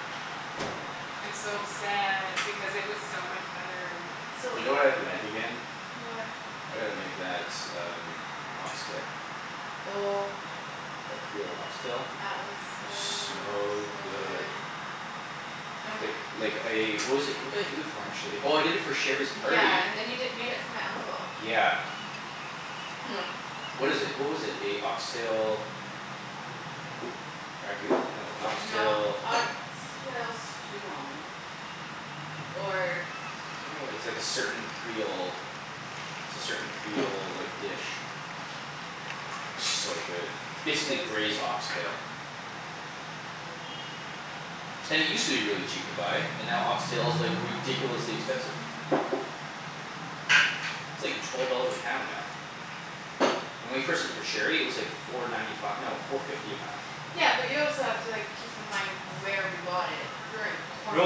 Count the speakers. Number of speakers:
three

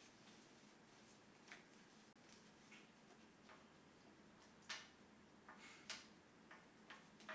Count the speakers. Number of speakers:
zero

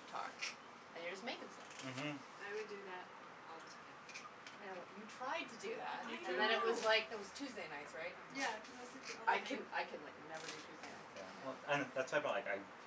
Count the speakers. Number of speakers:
three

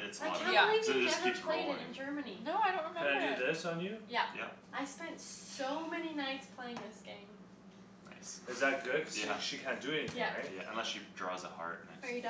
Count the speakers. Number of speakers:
four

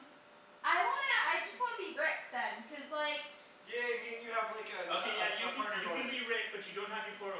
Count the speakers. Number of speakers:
three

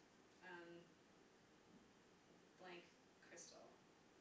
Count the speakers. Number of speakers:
one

